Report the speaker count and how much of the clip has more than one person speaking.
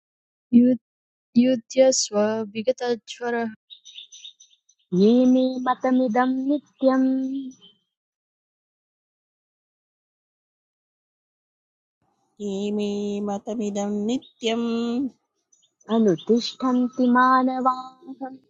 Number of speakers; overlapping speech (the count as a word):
three, no overlap